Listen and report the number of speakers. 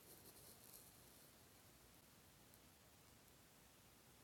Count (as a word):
zero